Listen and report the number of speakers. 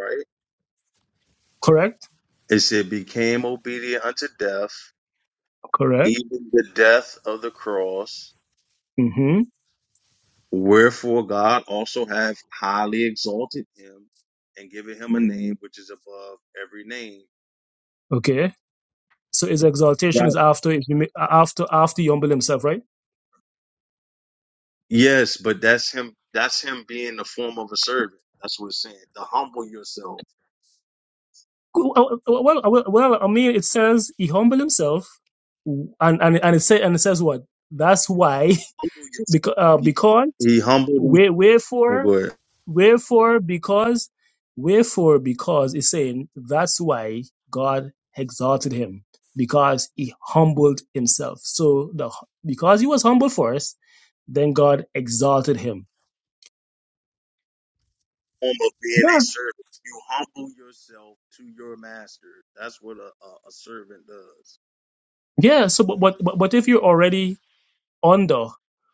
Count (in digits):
2